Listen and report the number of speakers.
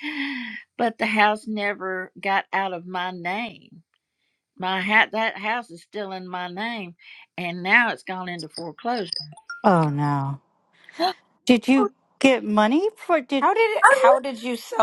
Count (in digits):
3